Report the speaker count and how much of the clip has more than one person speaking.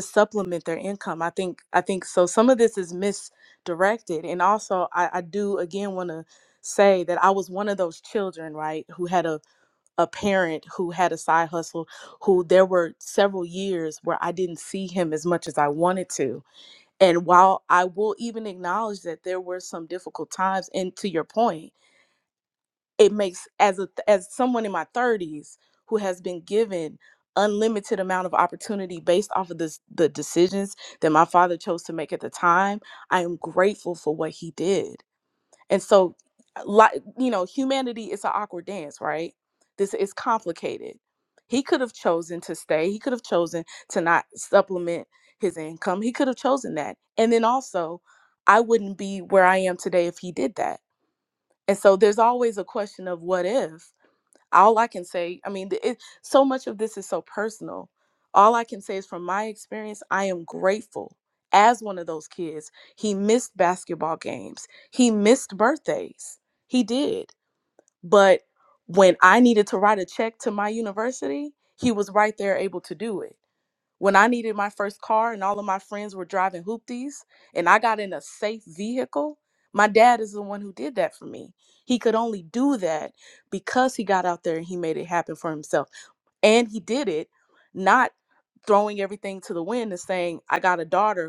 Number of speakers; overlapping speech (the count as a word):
one, no overlap